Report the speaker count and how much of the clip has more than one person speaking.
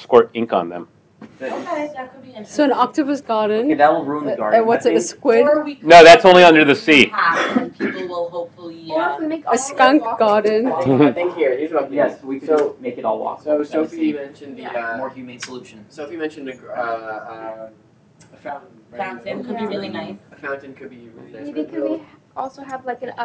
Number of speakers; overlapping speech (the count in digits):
6, about 43%